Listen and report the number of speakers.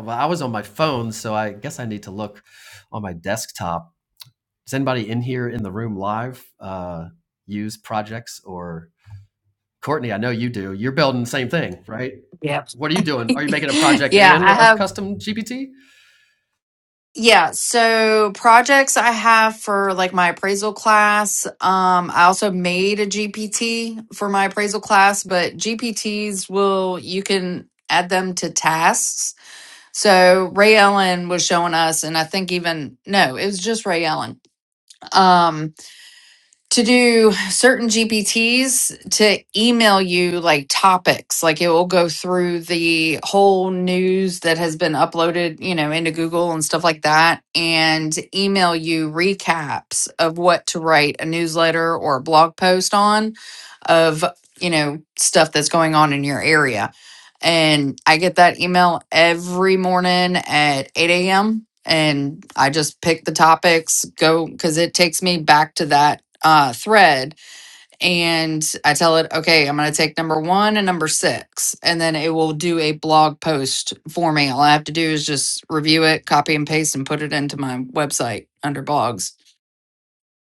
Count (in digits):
2